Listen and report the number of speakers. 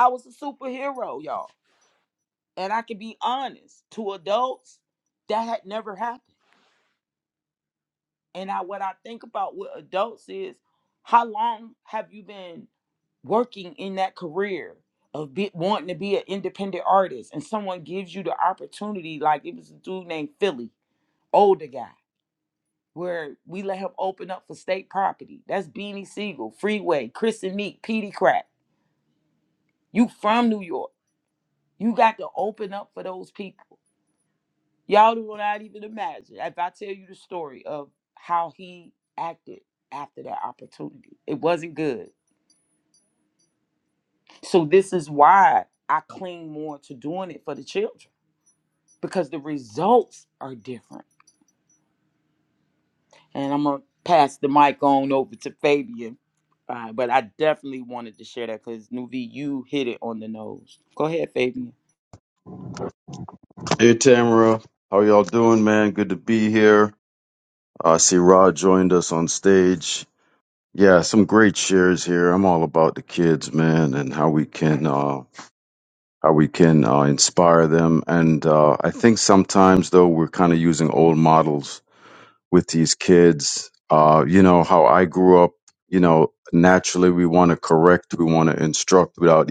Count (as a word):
two